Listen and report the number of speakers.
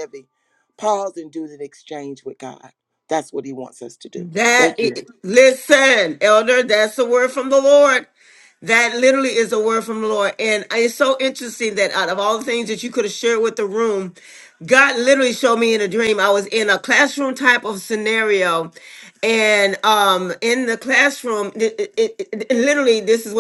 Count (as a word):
two